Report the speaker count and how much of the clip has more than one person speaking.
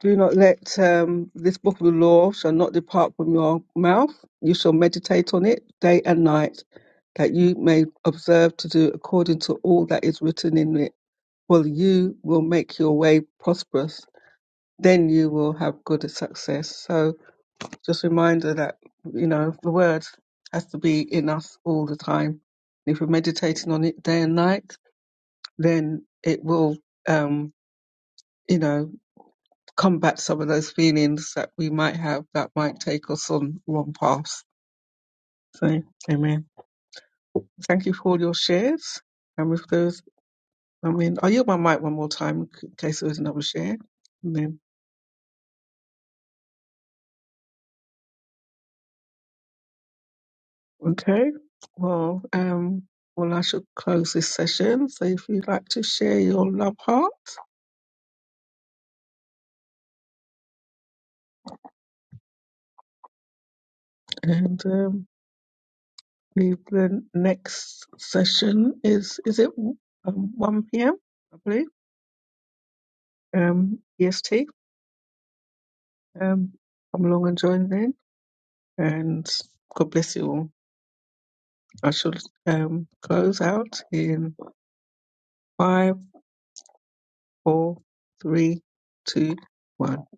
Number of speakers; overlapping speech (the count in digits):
1, no overlap